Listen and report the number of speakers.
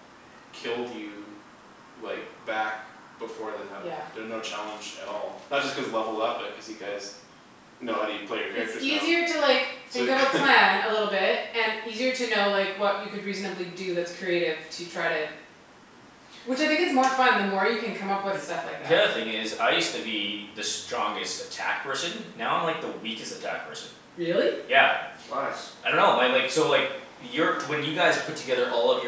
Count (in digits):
3